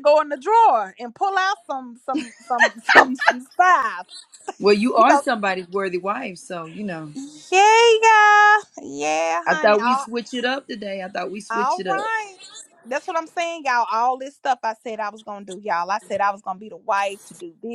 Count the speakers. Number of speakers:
two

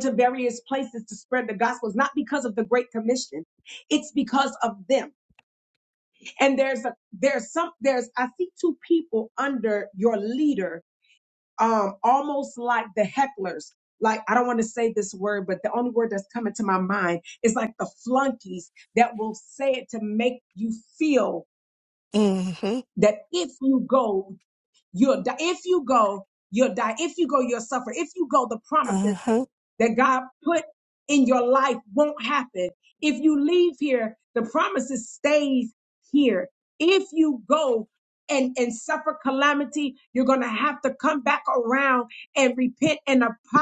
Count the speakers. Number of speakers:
two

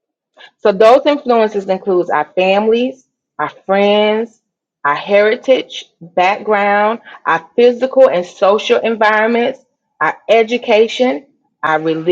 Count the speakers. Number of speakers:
one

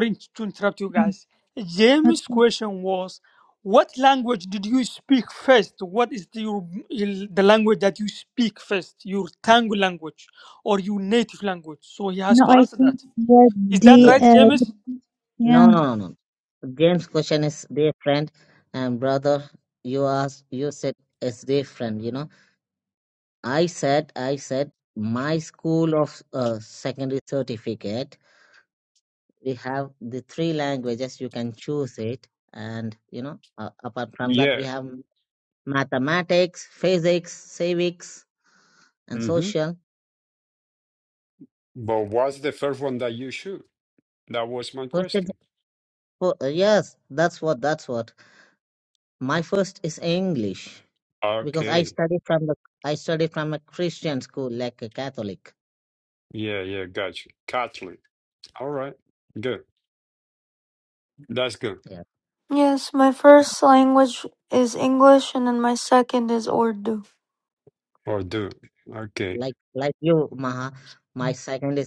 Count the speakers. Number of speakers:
five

